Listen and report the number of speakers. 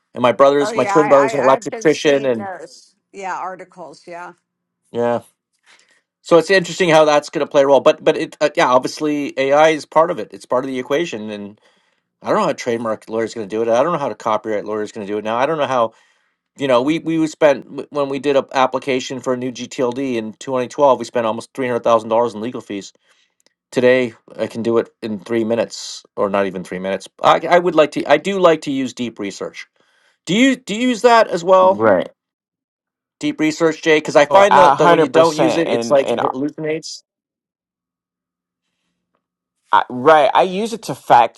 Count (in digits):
3